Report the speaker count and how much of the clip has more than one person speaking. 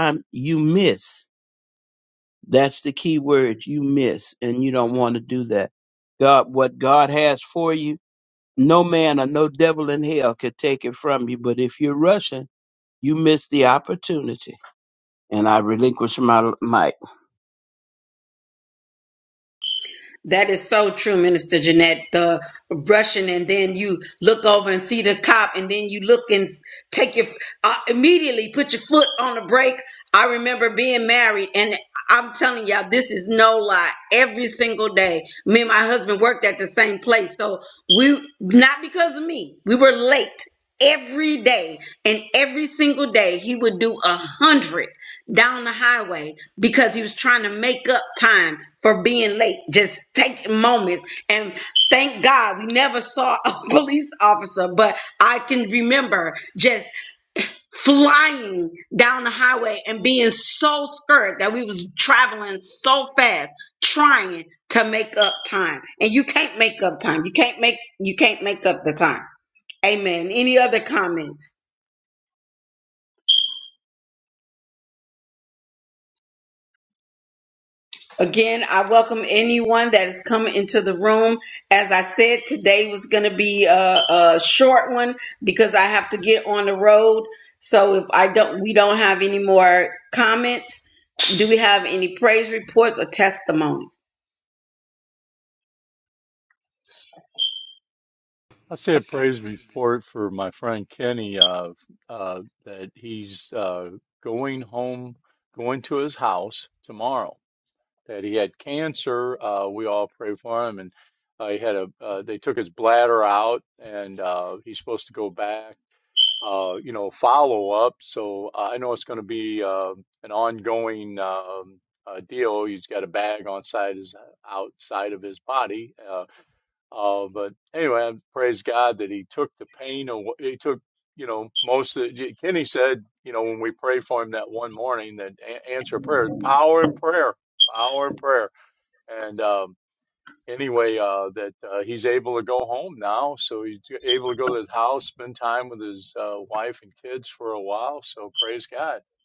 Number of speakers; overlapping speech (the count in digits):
3, no overlap